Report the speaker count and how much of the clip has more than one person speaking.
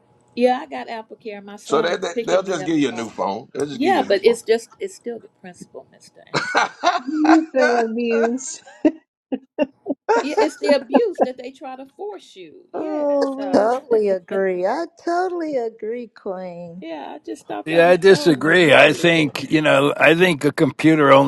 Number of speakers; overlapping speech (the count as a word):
five, about 23%